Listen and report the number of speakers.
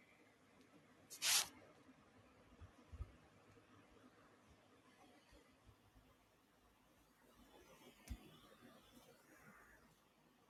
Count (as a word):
zero